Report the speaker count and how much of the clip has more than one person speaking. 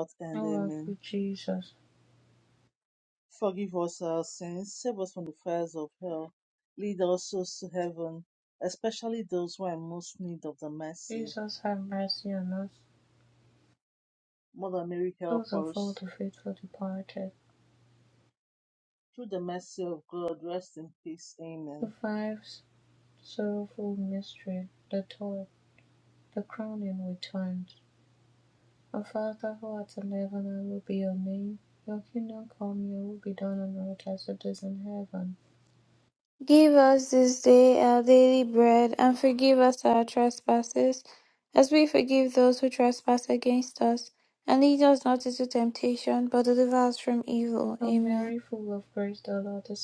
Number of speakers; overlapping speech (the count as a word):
three, about 4%